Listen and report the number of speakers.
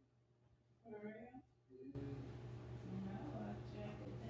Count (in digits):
0